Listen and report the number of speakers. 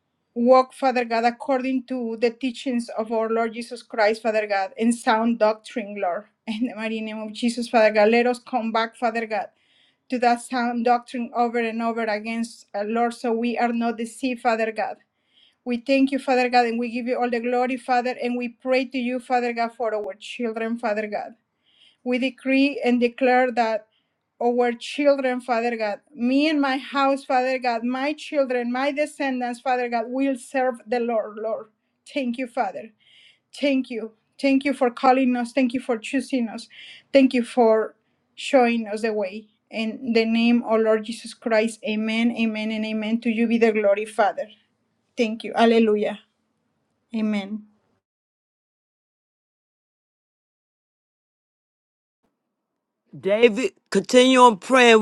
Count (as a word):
two